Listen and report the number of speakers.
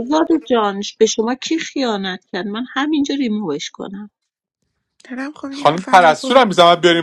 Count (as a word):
three